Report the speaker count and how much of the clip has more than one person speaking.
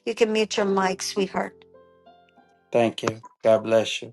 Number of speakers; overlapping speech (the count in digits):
2, no overlap